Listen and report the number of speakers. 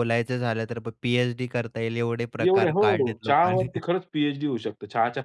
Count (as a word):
two